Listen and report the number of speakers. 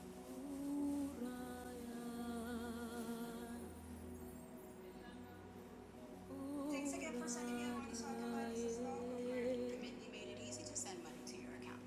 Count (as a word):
zero